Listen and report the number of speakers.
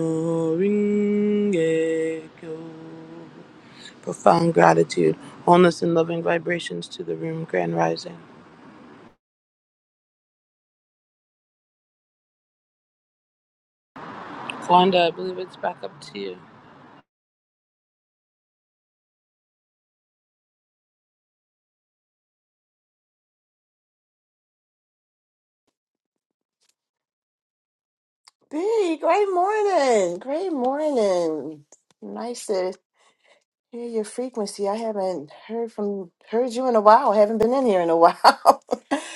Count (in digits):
2